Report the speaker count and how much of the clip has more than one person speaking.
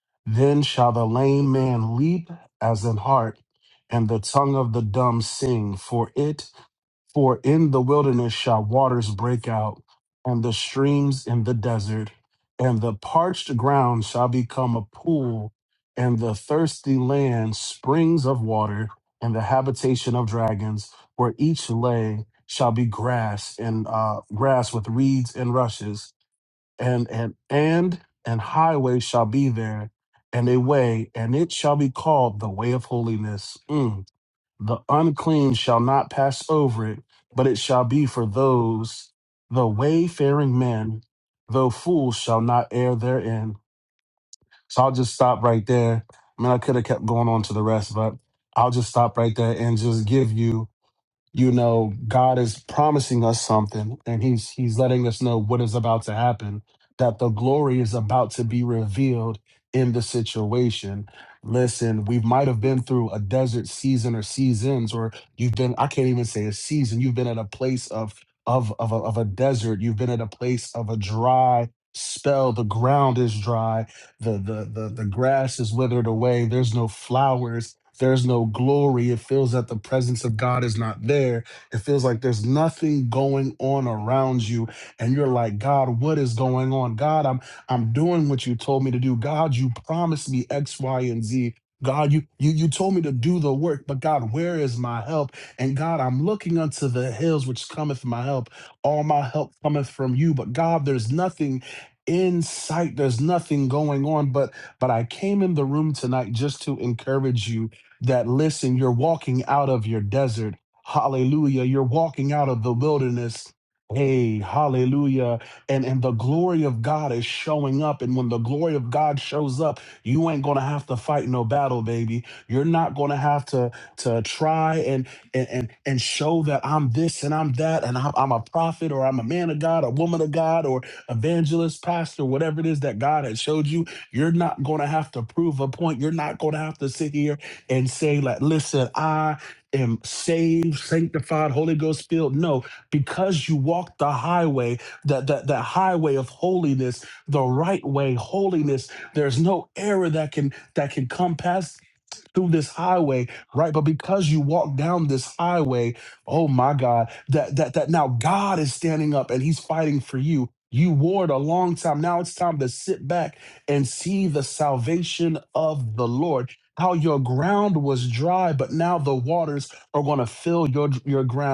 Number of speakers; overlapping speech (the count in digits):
1, no overlap